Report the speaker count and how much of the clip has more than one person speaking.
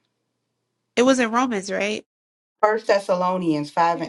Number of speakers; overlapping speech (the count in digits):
2, no overlap